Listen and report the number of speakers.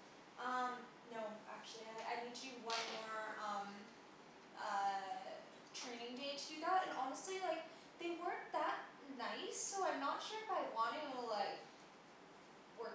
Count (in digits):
1